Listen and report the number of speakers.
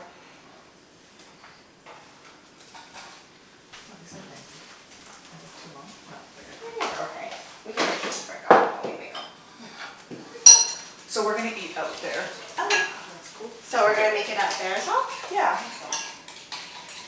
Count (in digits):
2